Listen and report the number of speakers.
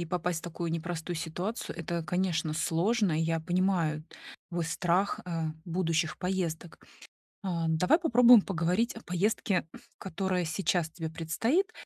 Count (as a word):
one